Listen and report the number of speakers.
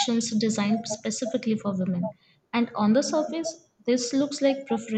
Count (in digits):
1